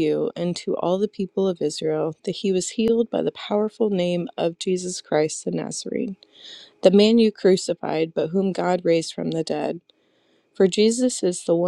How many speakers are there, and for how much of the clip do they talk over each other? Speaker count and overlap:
1, no overlap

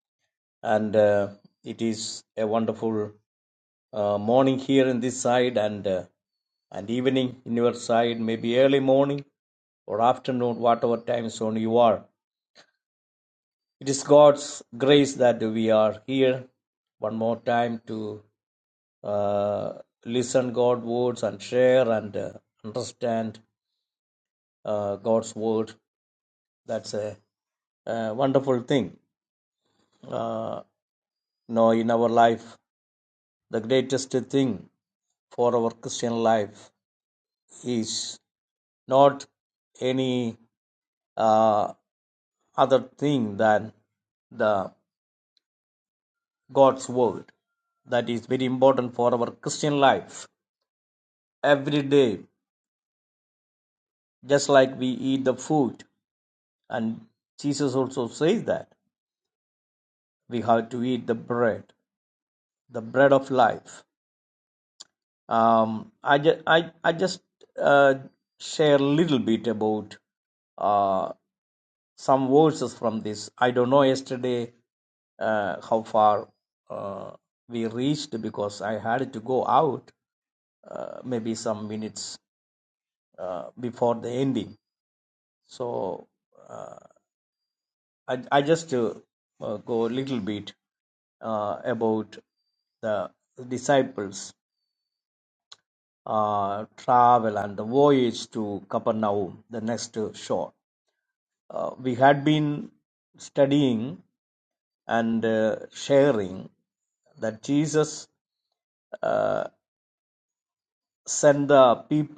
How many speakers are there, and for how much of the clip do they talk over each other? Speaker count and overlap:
1, no overlap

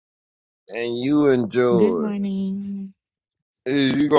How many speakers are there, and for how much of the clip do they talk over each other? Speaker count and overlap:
2, about 9%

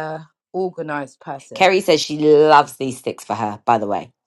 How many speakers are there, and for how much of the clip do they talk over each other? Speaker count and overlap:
2, about 2%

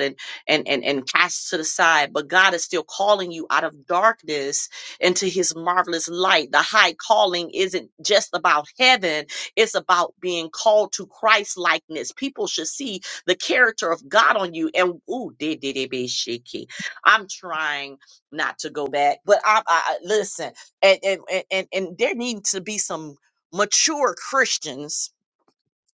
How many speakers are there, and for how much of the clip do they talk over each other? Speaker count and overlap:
1, no overlap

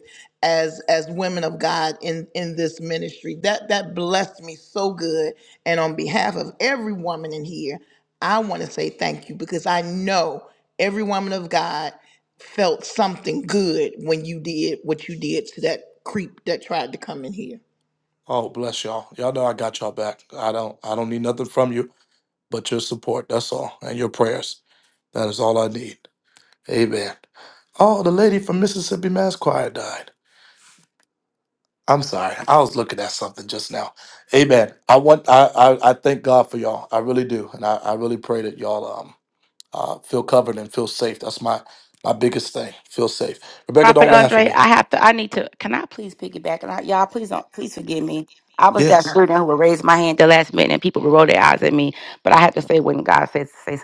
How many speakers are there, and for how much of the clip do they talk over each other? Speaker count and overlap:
3, about 2%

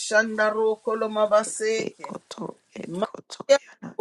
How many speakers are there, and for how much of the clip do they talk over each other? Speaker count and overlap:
2, about 10%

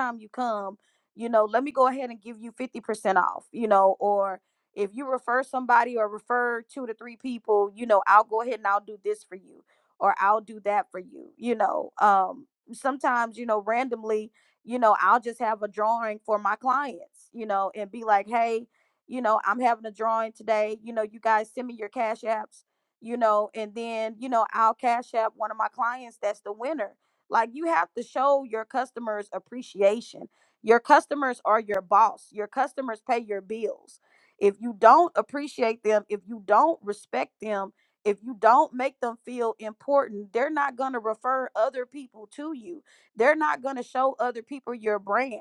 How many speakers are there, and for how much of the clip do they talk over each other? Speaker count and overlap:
1, no overlap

